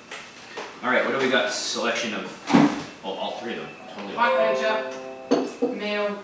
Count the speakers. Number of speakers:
2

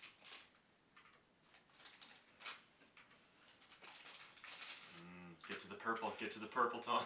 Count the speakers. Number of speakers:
1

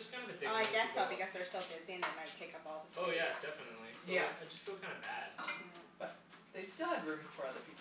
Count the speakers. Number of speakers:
3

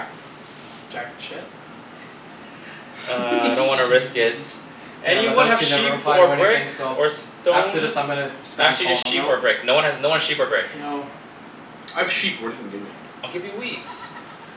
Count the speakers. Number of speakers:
4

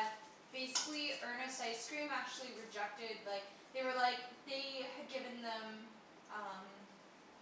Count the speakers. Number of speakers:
1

